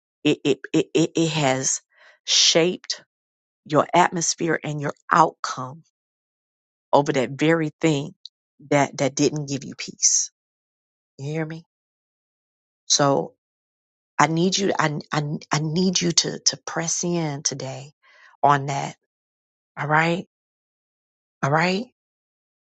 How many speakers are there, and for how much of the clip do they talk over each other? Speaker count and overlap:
one, no overlap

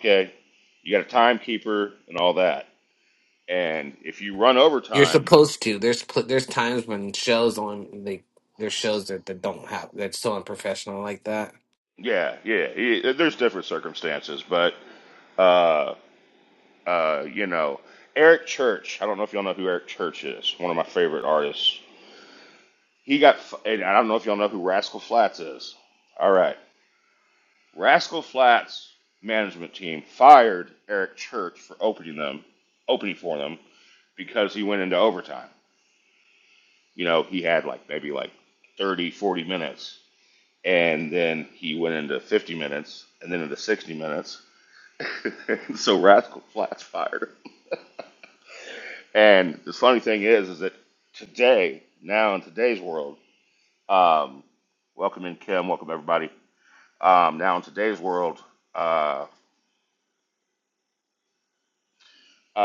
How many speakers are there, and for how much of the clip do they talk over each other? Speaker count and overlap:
two, under 1%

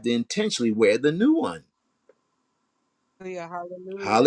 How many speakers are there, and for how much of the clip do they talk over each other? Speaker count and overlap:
two, about 7%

